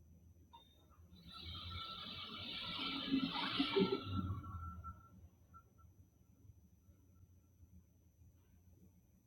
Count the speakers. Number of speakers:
0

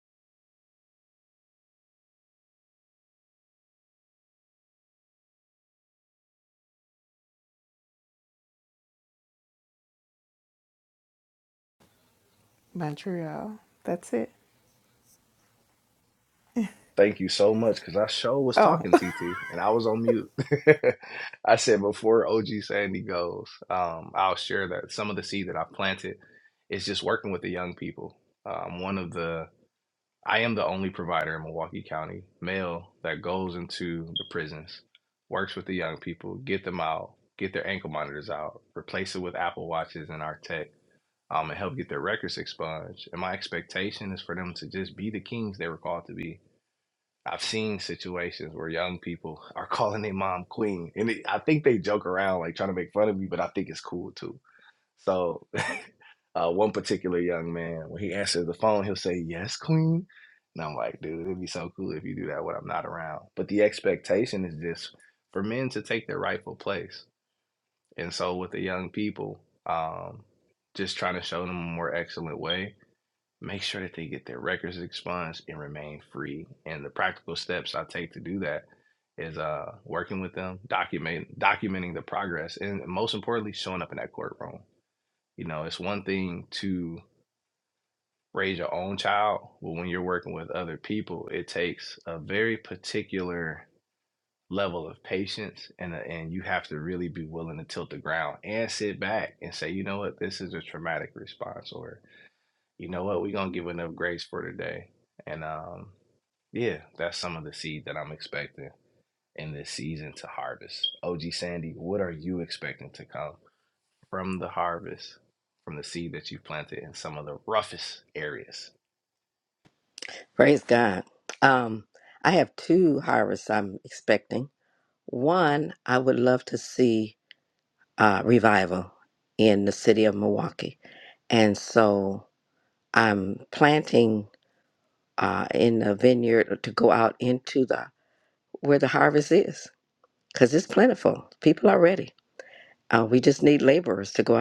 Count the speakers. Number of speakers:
3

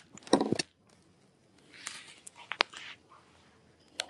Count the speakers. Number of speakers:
0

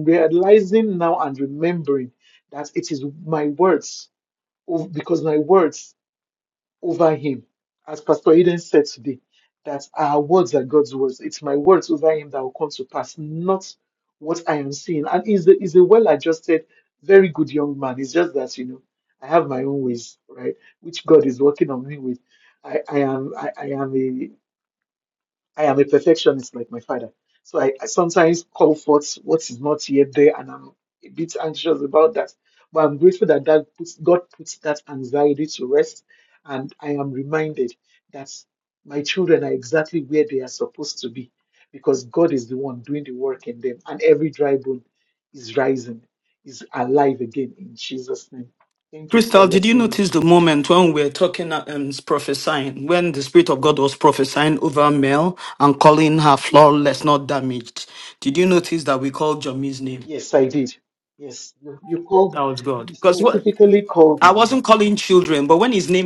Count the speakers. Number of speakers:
2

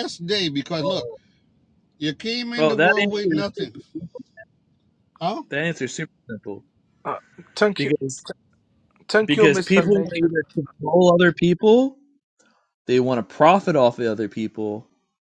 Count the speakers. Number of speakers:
3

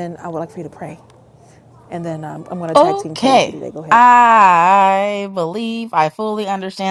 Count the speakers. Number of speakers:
2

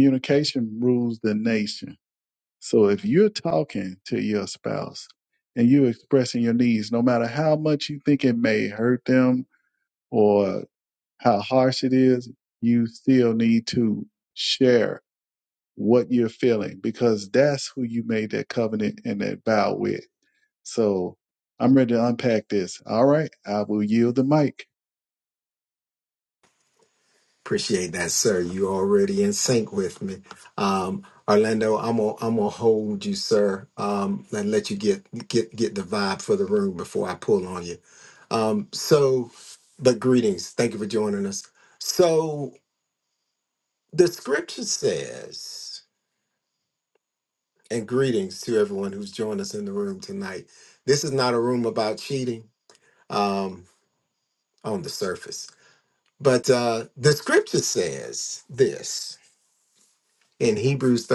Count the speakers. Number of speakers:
2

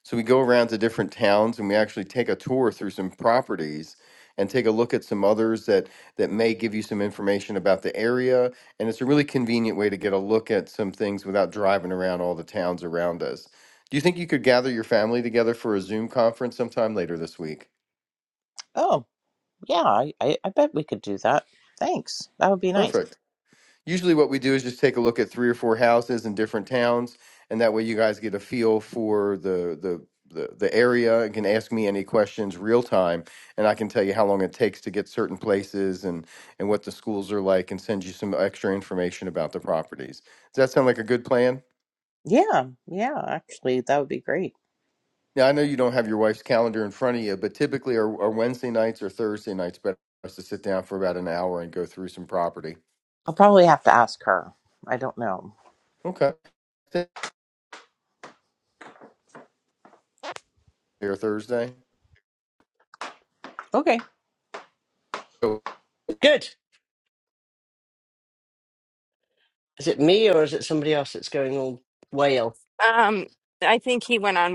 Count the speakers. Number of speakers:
4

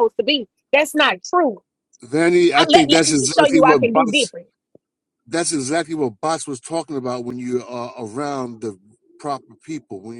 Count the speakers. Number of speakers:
2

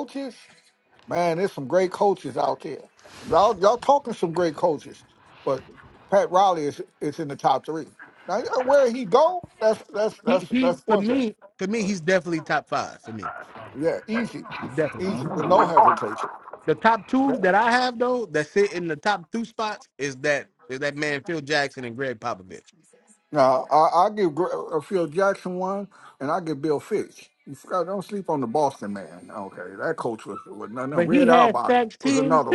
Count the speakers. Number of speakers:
2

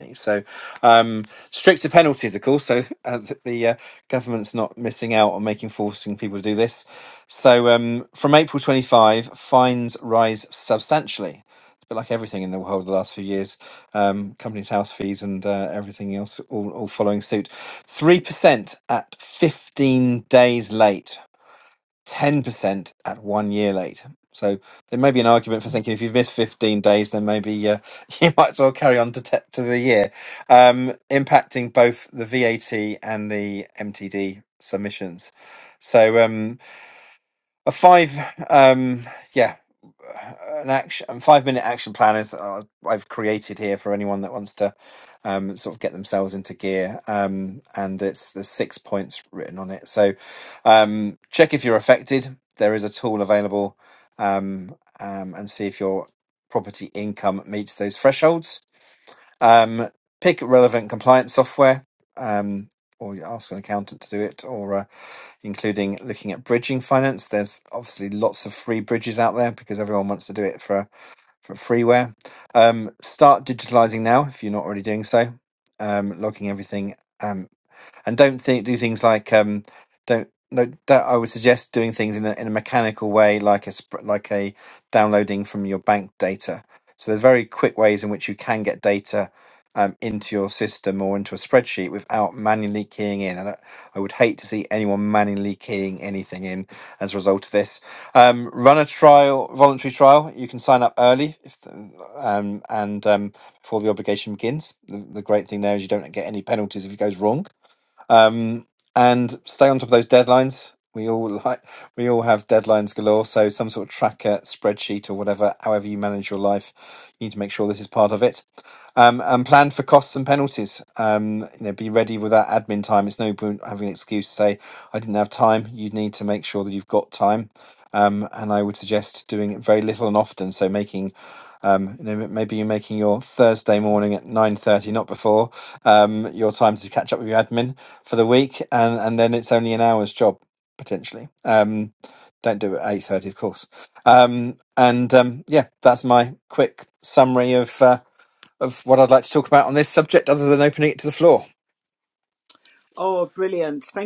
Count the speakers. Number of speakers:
2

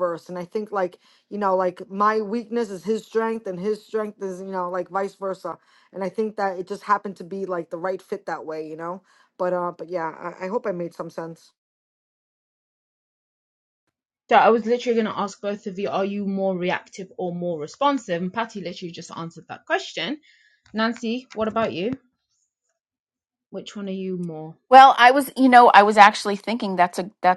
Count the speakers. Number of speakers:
3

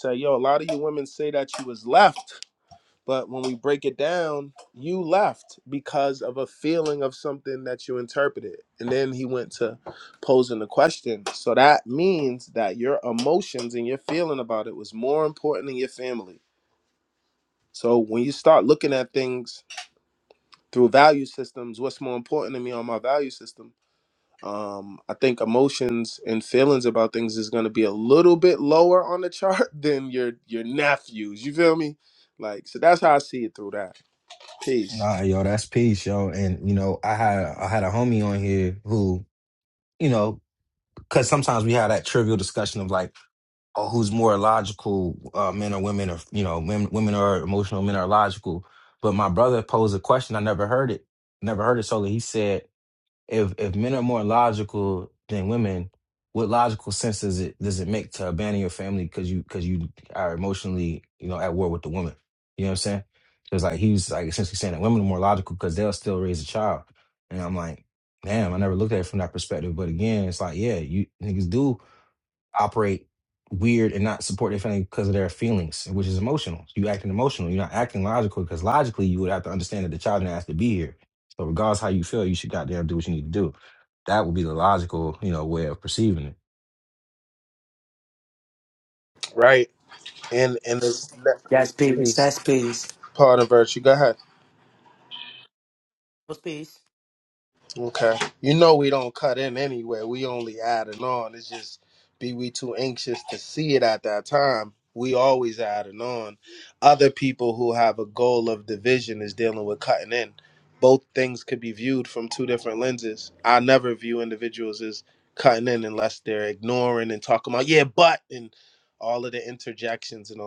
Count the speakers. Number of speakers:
3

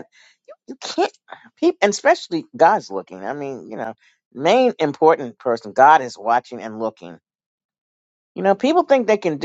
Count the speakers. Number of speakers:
1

